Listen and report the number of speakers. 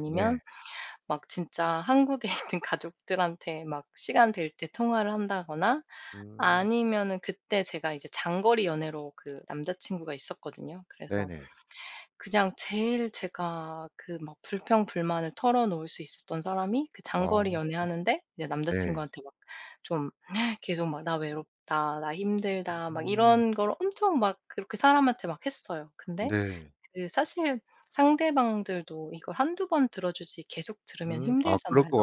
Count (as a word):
two